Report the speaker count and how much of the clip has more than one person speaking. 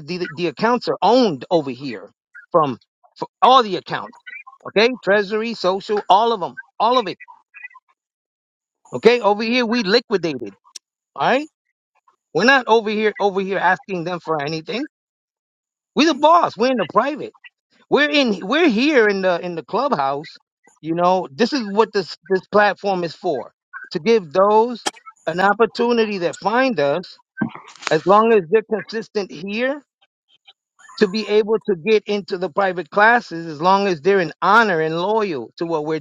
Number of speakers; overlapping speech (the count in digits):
1, no overlap